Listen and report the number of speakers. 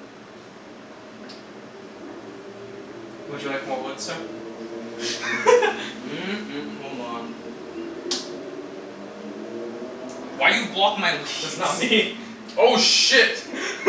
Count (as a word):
three